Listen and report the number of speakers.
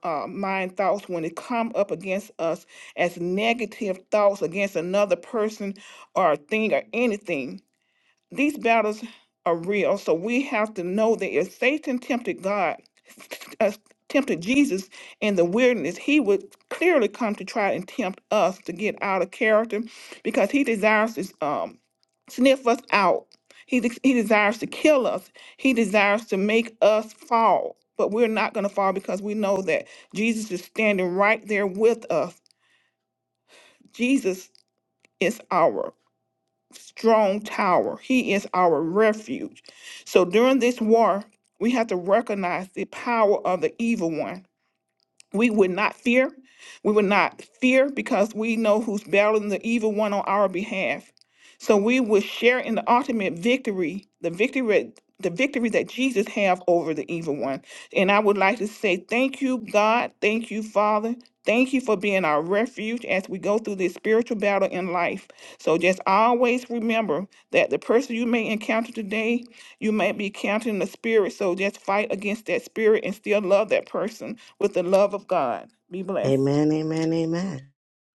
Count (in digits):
2